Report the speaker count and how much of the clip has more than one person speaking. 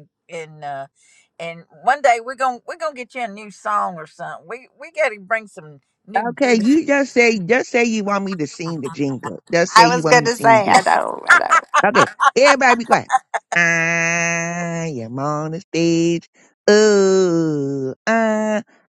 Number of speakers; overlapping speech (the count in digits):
3, about 8%